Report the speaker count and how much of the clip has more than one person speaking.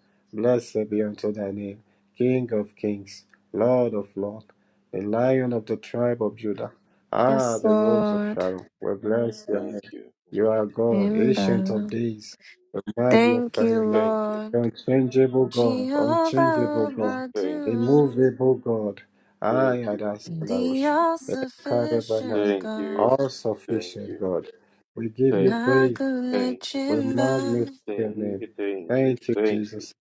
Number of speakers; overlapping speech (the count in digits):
3, about 41%